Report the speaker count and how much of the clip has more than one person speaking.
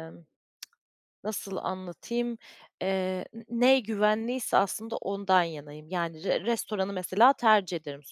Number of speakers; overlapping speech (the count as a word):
one, no overlap